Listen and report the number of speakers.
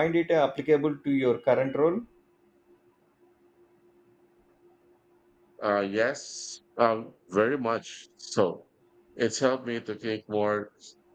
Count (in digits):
2